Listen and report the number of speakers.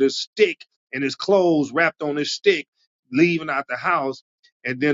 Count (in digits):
1